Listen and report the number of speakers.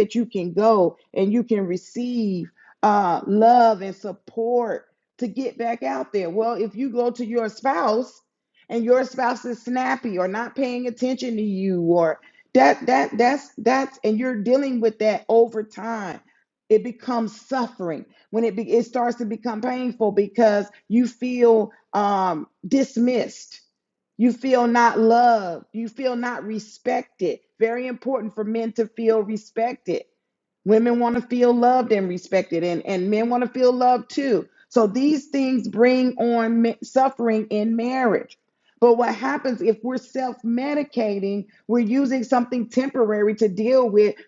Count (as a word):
one